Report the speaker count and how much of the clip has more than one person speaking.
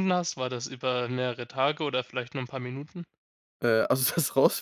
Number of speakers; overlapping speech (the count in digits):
2, no overlap